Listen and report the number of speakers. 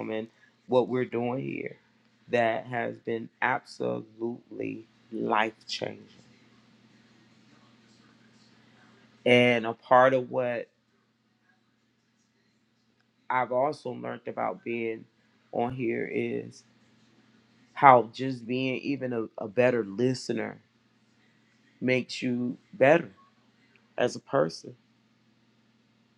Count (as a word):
one